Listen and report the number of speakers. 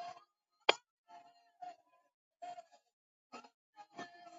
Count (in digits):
0